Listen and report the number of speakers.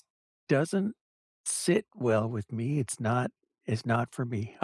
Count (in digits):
1